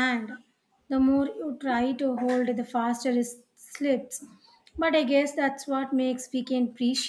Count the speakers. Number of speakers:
one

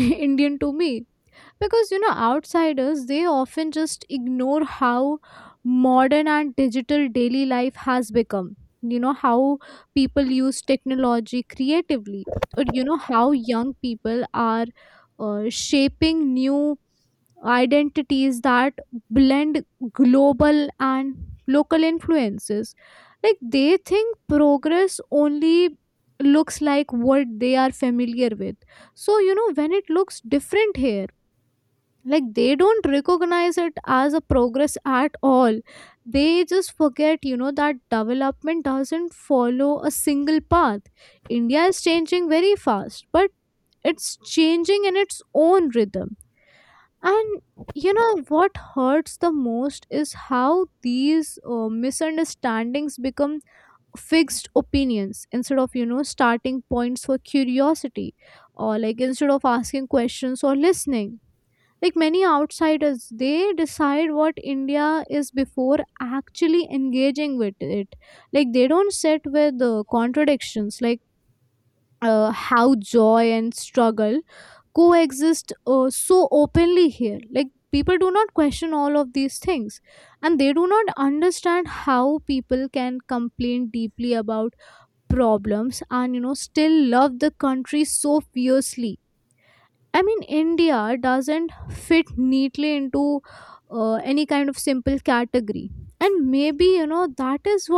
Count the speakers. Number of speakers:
one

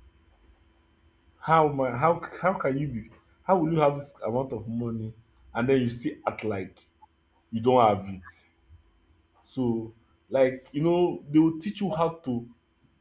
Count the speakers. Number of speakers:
one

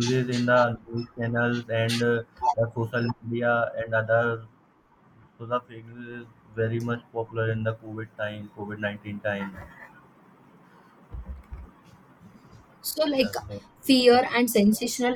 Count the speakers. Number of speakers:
two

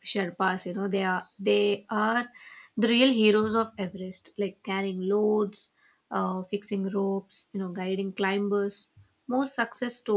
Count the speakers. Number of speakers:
one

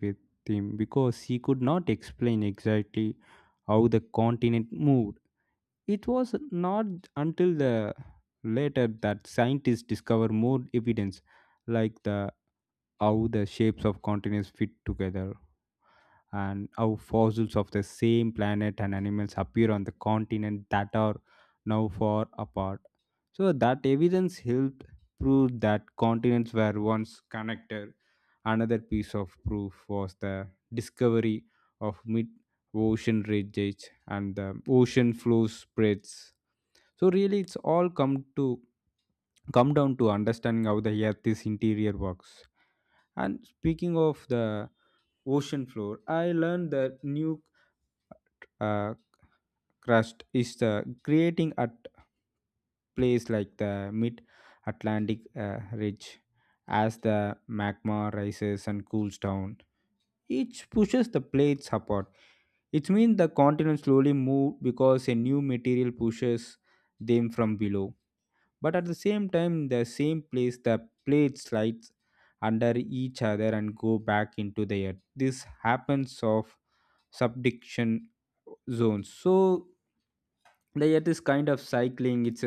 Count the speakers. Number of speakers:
one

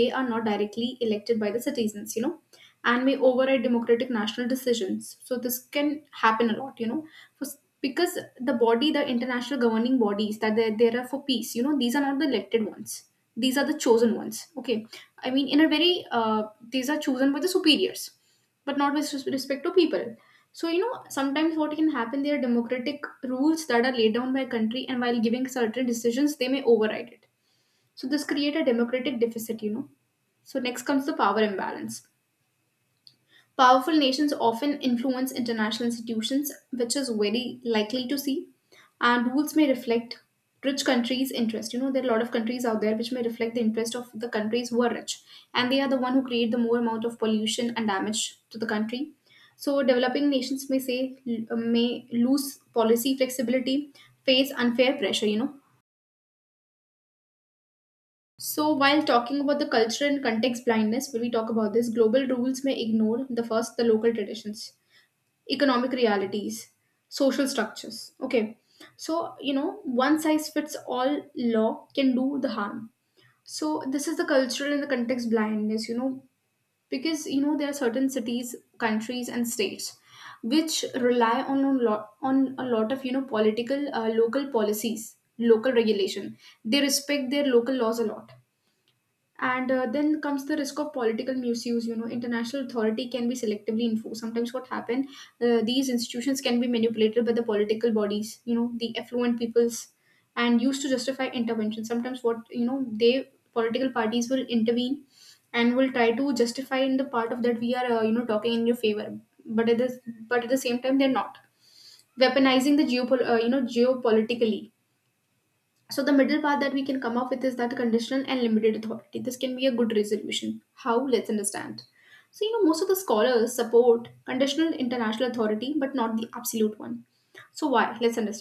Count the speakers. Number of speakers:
one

